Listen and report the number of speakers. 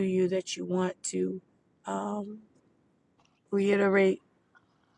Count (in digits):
1